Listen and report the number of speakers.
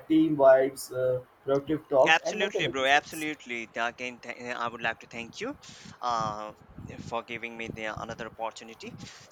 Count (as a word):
two